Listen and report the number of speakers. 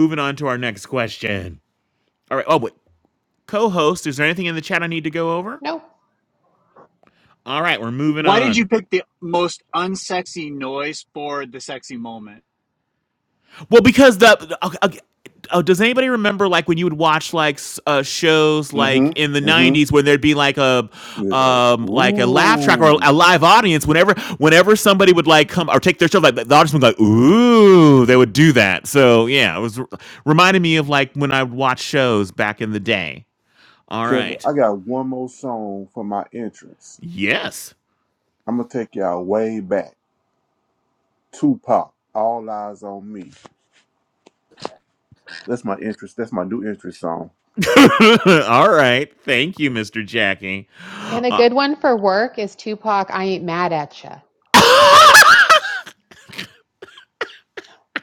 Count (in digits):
4